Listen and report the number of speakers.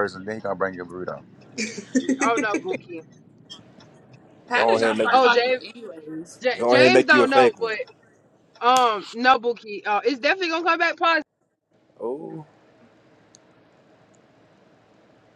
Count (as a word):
four